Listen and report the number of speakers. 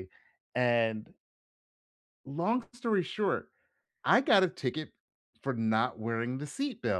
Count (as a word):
one